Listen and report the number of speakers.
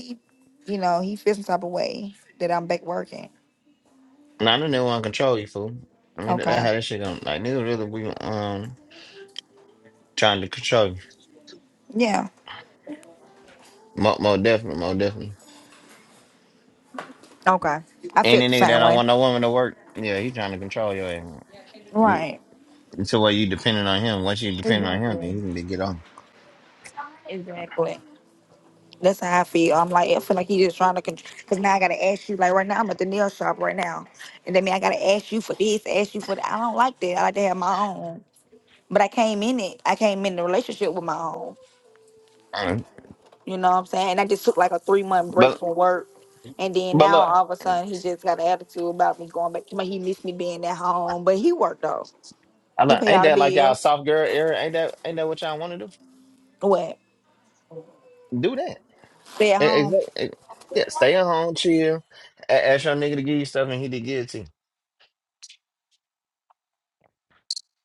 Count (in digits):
2